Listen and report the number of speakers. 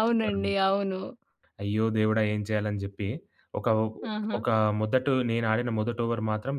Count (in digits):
2